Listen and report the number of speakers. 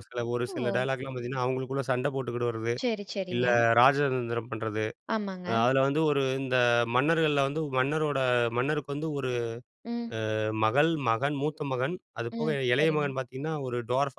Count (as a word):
two